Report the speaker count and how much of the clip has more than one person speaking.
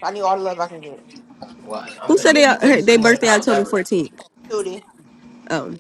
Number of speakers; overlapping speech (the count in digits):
3, about 29%